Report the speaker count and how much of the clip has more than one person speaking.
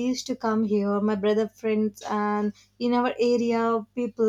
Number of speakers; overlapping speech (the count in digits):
1, no overlap